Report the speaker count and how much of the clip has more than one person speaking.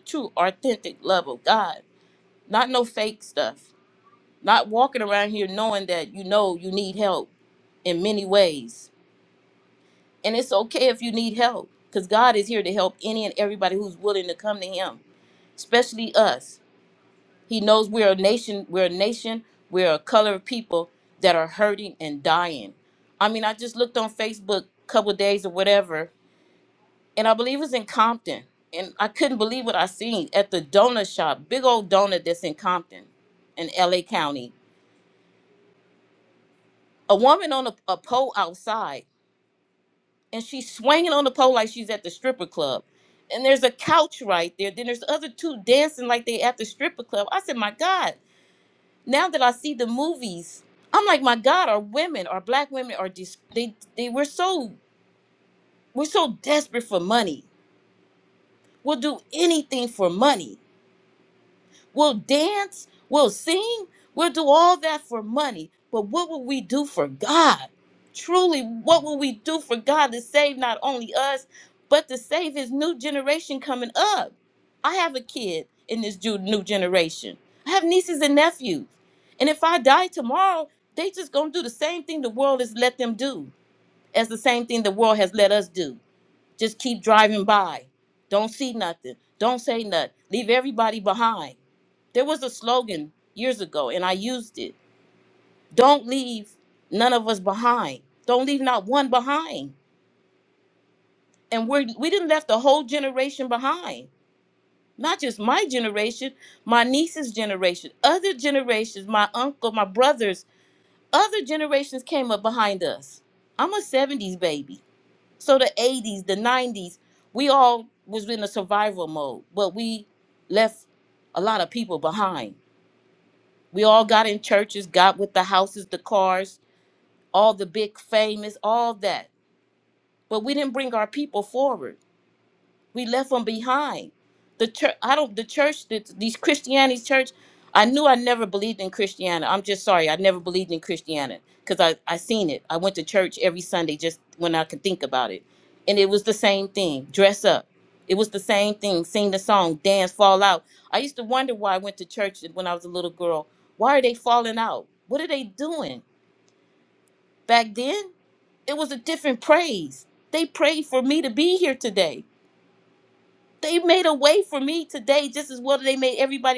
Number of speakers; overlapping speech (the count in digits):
1, no overlap